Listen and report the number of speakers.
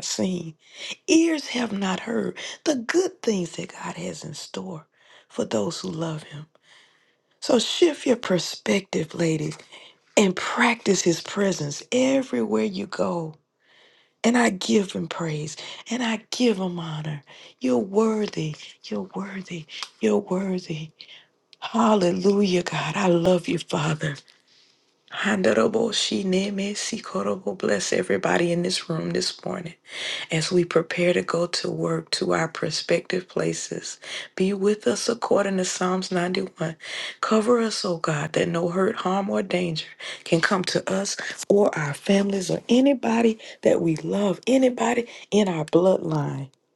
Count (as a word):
one